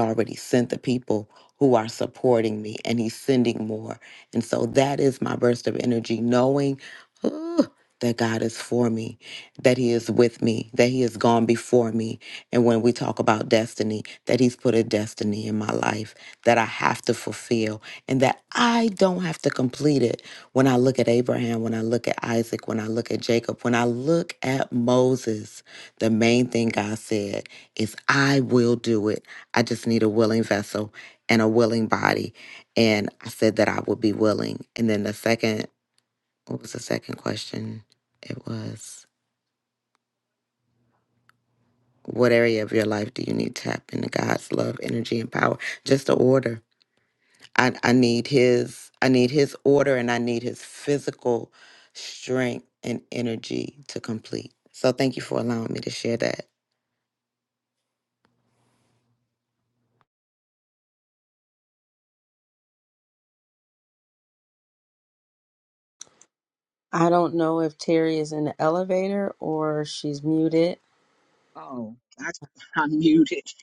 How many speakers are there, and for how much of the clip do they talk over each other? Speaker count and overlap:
3, no overlap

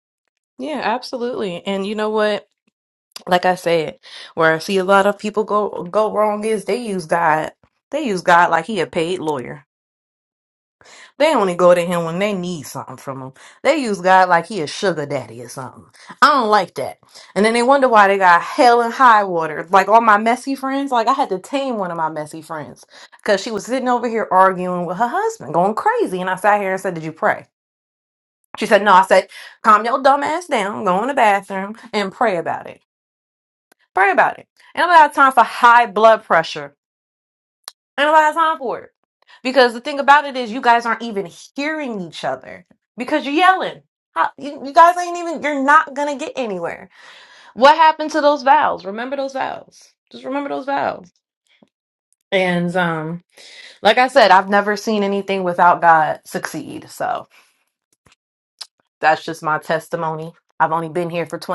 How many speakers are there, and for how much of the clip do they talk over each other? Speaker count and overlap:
1, no overlap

